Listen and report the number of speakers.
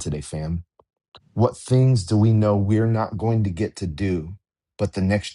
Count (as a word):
one